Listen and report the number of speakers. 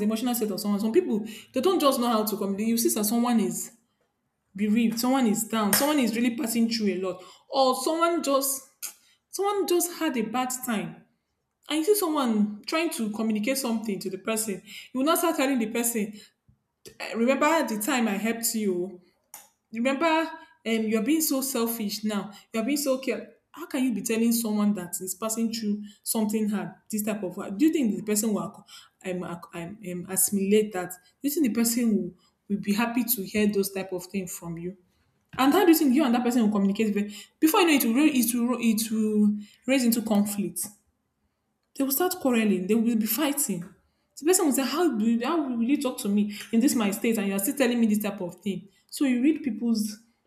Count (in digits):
1